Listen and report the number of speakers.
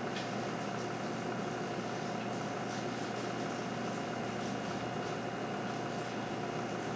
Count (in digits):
0